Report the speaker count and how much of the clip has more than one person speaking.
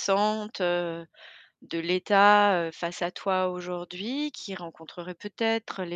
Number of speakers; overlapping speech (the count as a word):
one, no overlap